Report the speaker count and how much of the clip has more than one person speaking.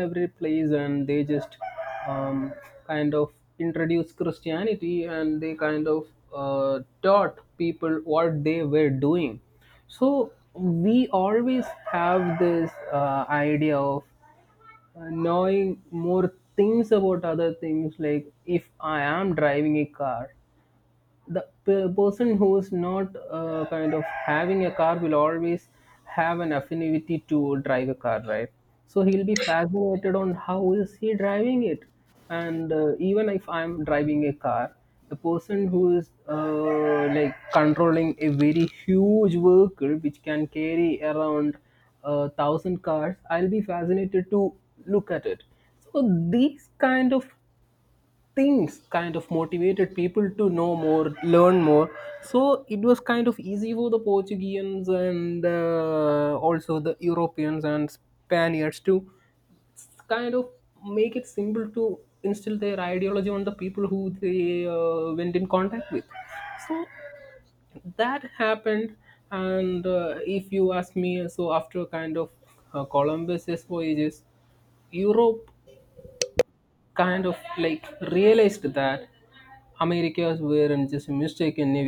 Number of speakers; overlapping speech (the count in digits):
1, no overlap